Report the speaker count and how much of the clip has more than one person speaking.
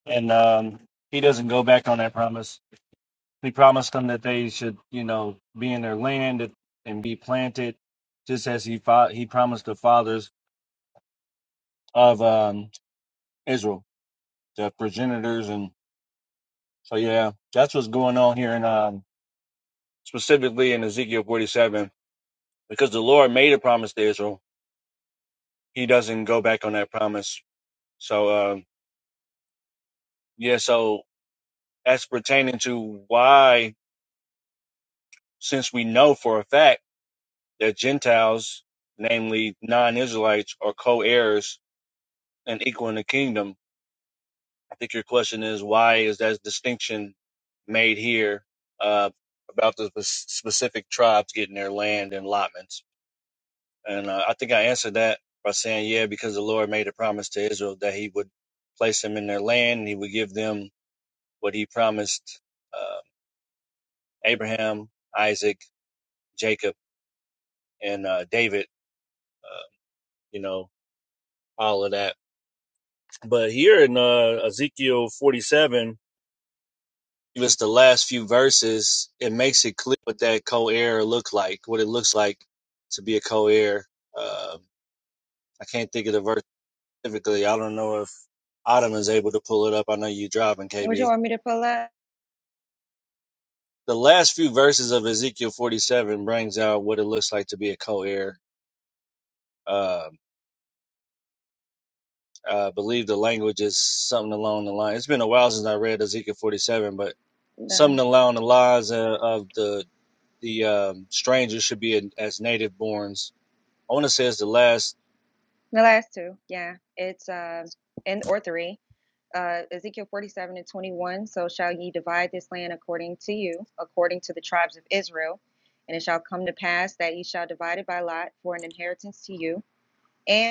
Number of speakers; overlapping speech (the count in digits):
2, under 1%